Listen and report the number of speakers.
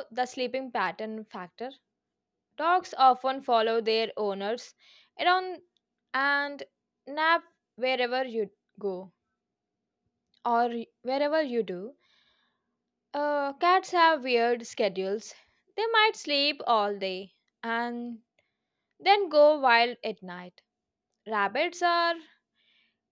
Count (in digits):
1